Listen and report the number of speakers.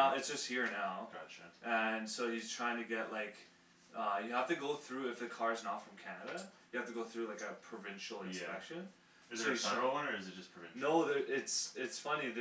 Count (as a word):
two